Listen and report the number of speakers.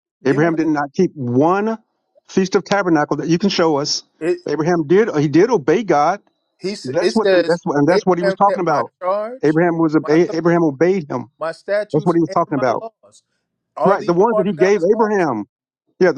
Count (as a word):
two